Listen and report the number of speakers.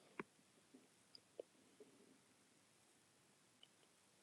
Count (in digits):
0